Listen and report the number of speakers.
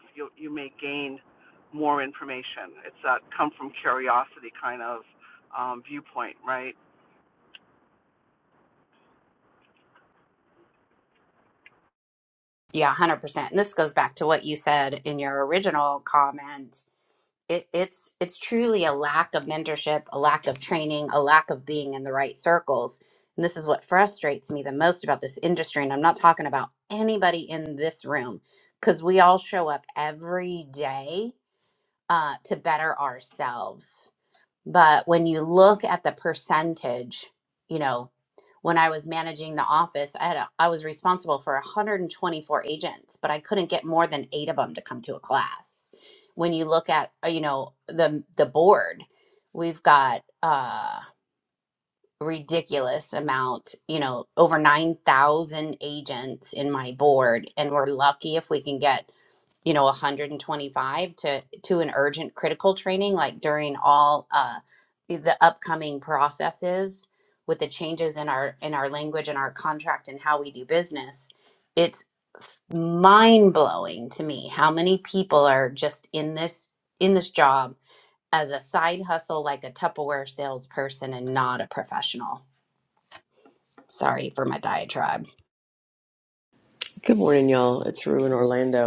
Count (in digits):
3